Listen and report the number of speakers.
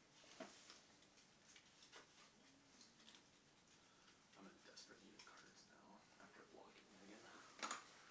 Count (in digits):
1